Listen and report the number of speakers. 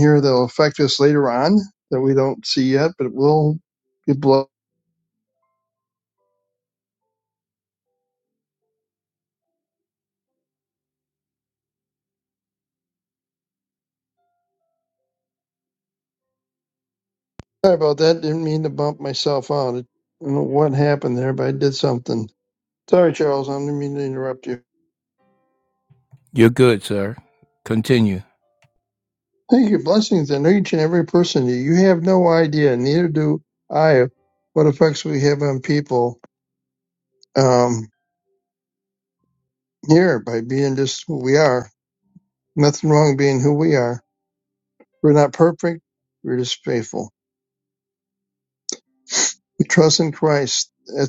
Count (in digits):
2